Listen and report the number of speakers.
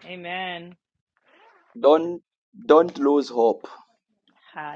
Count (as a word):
two